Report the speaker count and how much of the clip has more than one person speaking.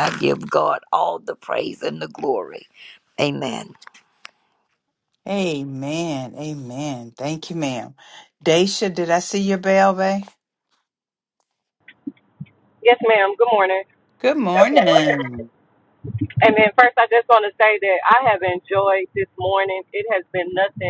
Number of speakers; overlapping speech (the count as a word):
three, about 3%